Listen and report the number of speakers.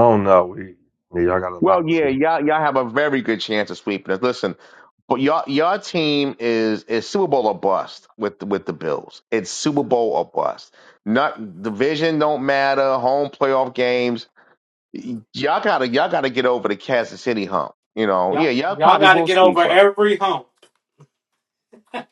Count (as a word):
three